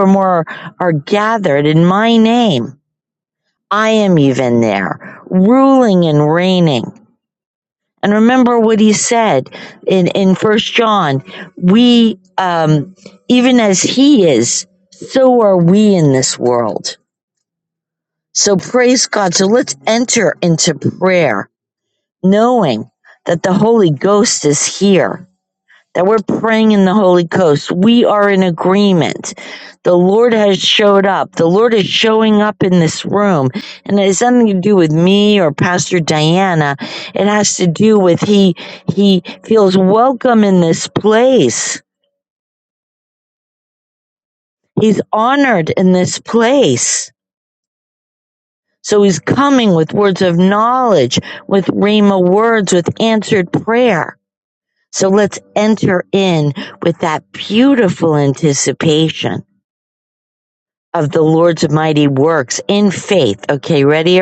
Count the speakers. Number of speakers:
1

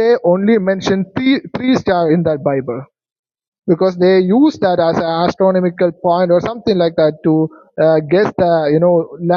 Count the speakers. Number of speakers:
1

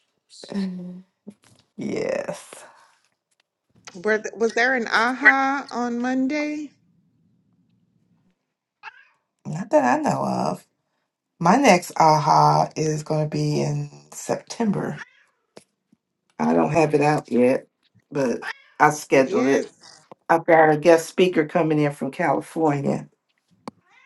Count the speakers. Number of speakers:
2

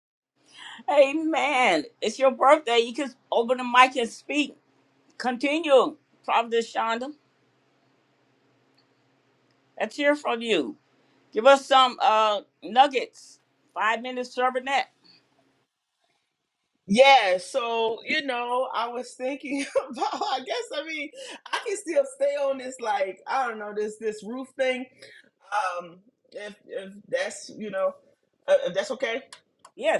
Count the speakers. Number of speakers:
2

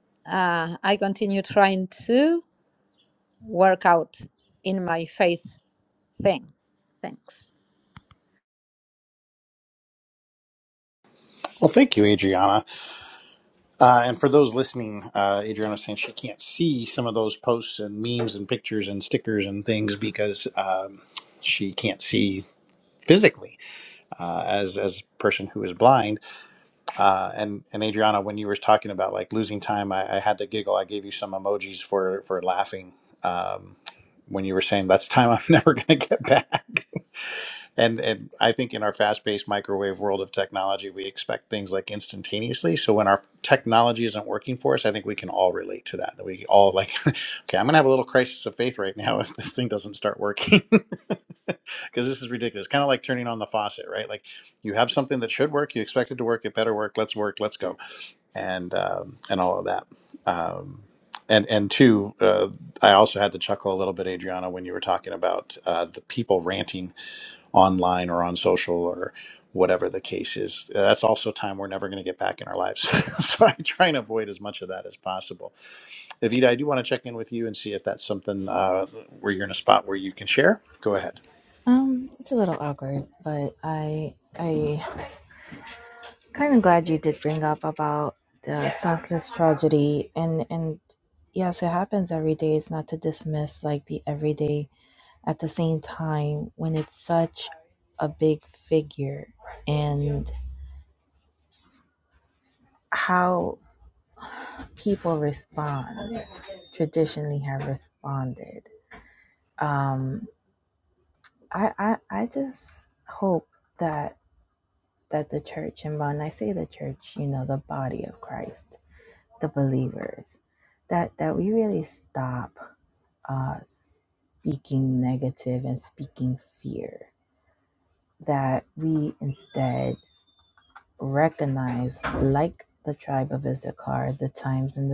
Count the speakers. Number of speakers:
3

